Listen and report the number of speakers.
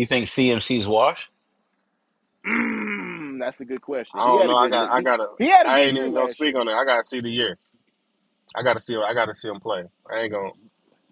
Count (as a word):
three